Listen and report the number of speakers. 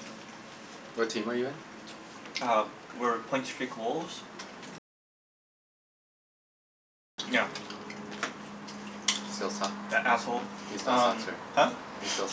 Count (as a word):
two